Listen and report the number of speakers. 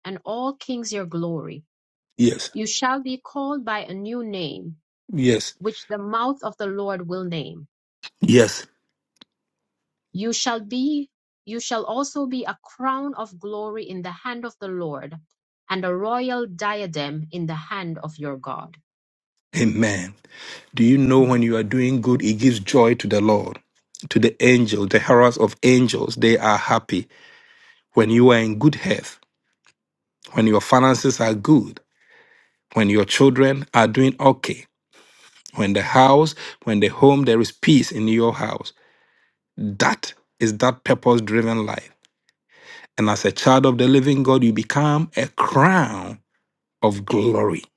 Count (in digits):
2